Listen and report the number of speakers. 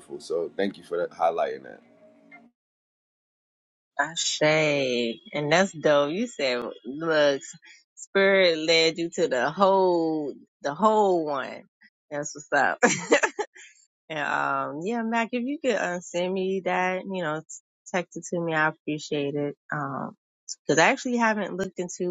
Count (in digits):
2